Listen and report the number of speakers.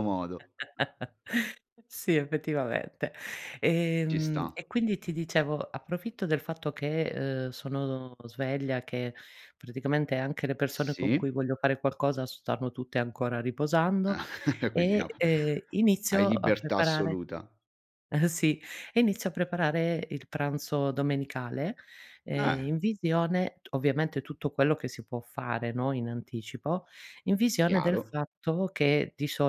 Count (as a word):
two